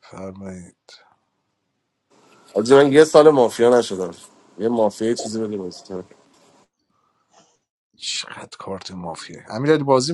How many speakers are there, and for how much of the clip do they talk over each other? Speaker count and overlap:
two, no overlap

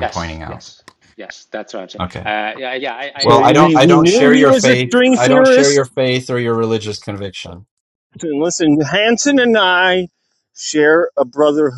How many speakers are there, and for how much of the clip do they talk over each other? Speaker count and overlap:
three, about 29%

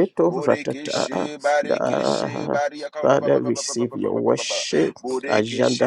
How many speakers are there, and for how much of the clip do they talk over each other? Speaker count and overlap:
two, about 73%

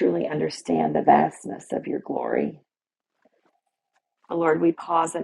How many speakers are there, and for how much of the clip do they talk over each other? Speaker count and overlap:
one, no overlap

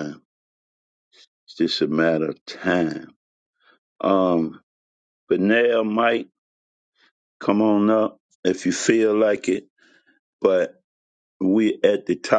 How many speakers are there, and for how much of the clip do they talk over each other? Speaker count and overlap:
one, no overlap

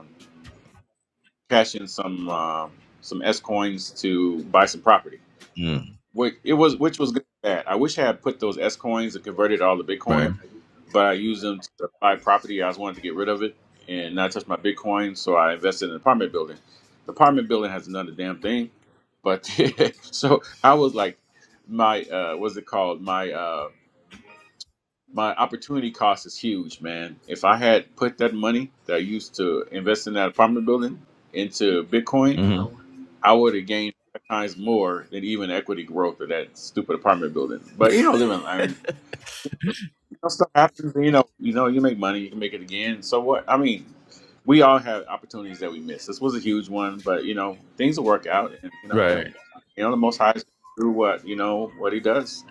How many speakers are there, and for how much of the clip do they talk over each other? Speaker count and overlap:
two, about 1%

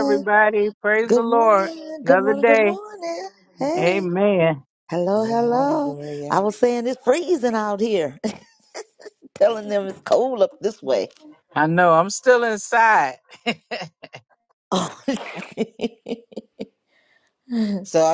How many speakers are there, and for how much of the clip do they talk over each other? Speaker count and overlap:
three, about 15%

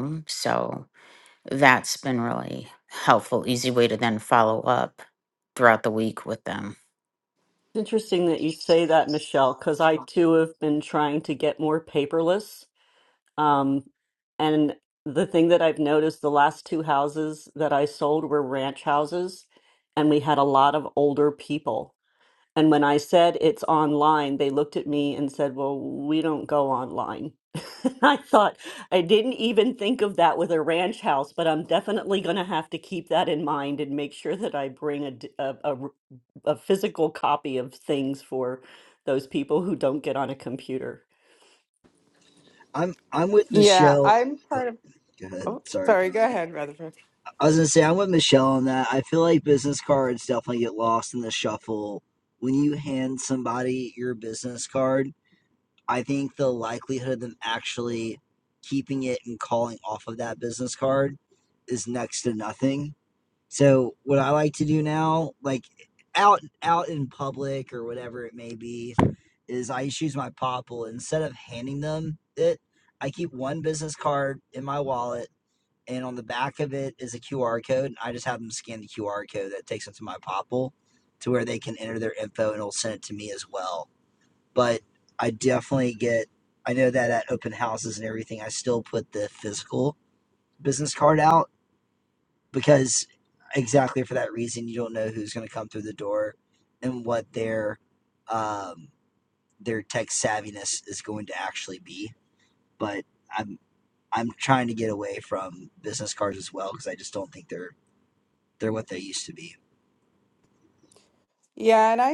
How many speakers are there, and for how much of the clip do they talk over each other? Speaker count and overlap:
four, about 2%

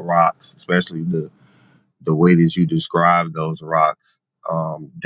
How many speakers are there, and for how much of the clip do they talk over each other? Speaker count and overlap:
one, no overlap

